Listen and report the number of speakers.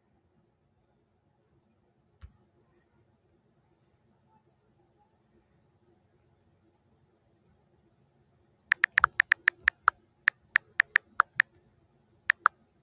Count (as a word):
zero